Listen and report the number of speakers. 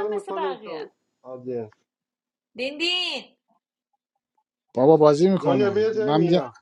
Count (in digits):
3